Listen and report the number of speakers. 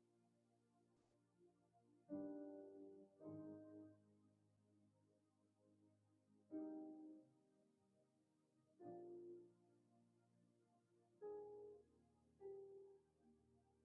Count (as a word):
zero